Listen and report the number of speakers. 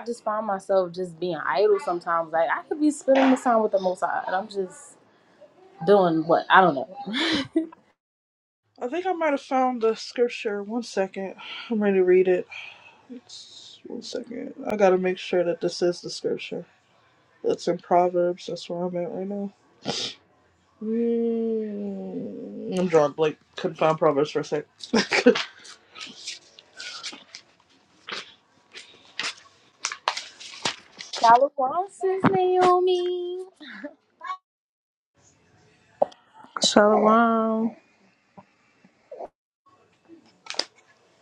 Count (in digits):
3